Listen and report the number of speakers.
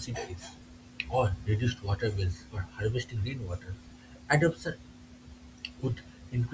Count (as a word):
one